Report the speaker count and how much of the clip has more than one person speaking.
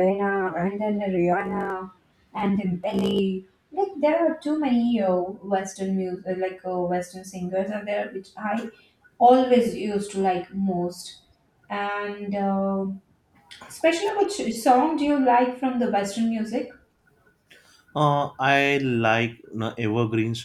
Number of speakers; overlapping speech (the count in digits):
2, no overlap